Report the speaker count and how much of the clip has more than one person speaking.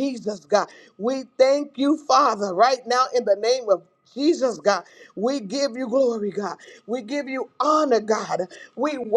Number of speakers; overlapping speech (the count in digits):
1, no overlap